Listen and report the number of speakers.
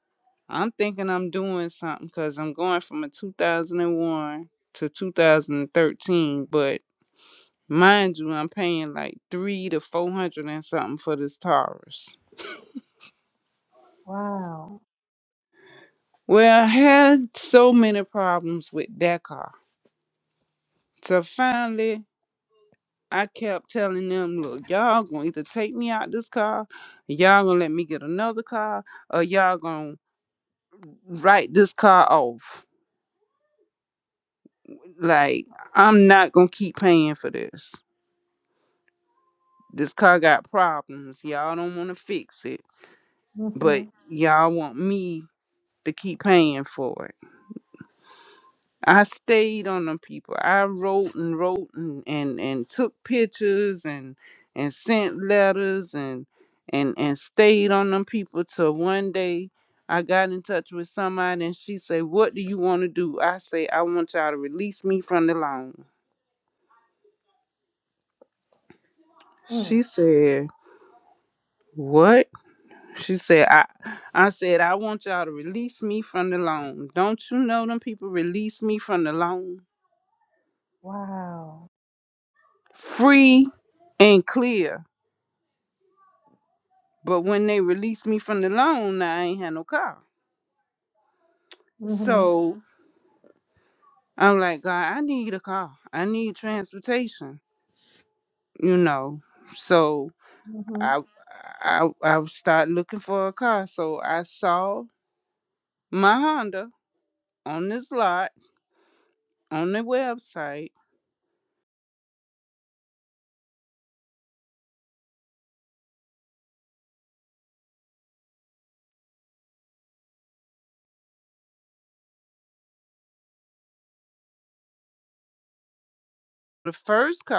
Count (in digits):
2